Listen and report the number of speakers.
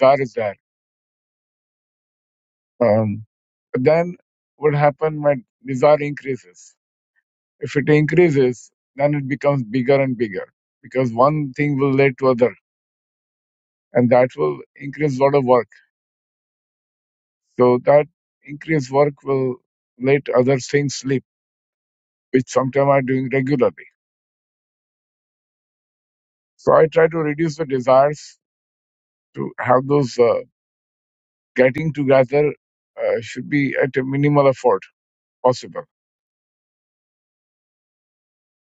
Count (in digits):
1